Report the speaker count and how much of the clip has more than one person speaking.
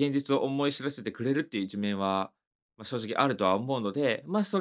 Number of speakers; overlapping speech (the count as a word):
one, no overlap